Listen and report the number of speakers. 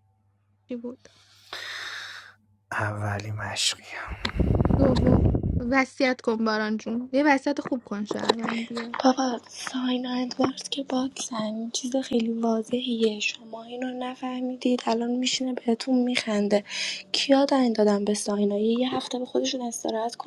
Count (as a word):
three